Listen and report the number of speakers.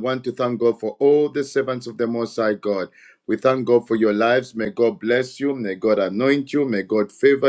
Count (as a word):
one